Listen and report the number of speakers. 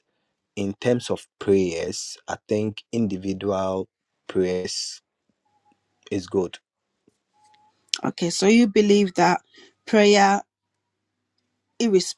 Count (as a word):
two